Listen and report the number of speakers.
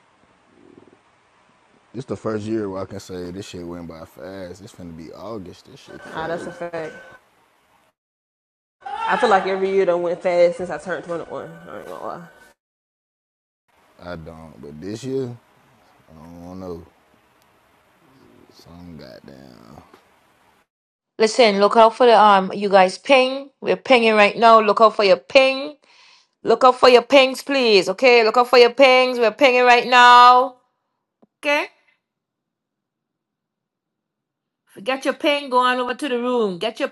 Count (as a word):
three